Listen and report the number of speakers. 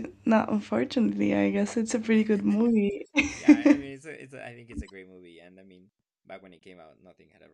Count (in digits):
2